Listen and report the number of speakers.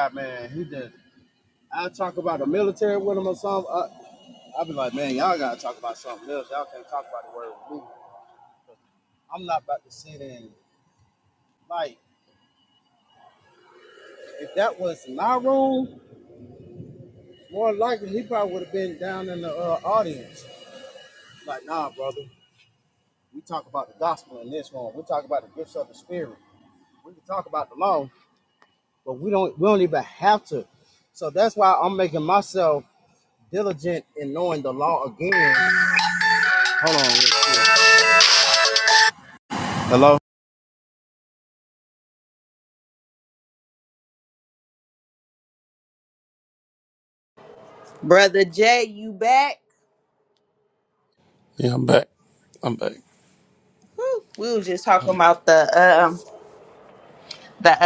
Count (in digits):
3